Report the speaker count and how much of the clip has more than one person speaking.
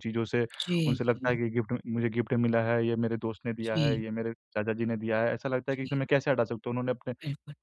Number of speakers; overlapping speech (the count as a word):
two, about 13%